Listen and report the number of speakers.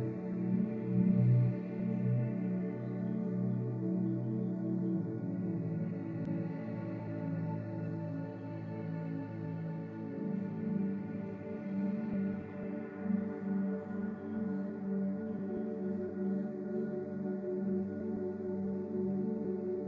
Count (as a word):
zero